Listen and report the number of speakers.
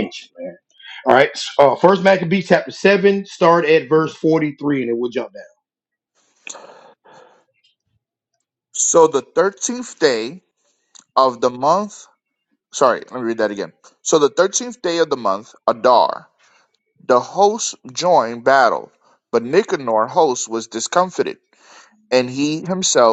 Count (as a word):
two